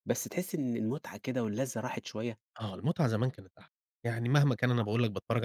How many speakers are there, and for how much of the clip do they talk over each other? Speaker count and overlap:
2, no overlap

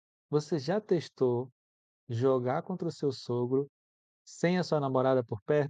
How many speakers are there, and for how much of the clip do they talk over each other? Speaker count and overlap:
1, no overlap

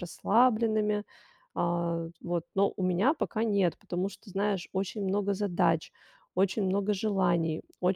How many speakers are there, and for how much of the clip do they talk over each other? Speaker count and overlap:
1, no overlap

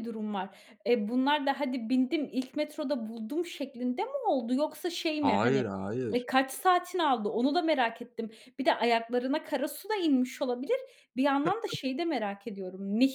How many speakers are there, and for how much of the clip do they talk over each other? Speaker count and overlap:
2, about 4%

